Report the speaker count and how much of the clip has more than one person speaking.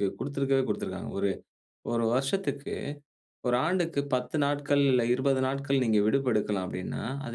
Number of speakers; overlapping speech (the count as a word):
one, no overlap